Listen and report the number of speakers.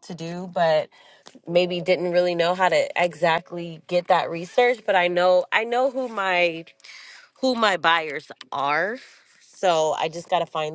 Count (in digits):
1